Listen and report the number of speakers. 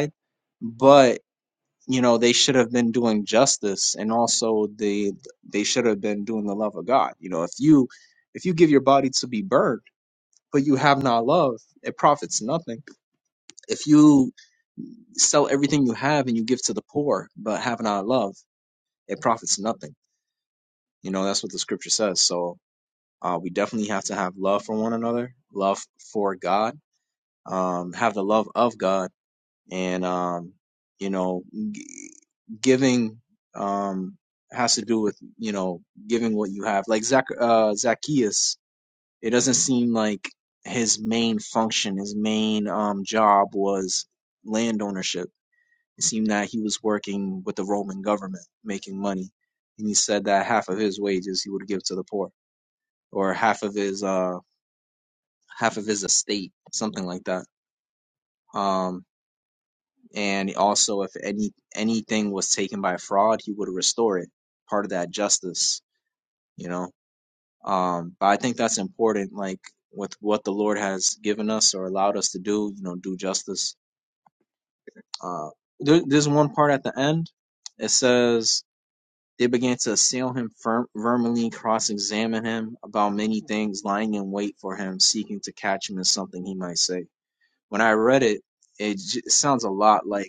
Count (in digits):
1